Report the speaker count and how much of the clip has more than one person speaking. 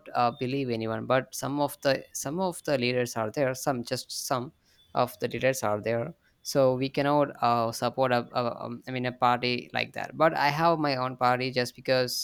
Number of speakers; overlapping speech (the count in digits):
1, no overlap